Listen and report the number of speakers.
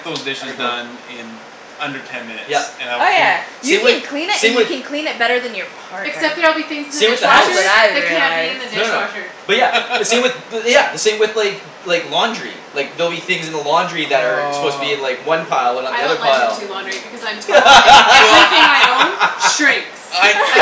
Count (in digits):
4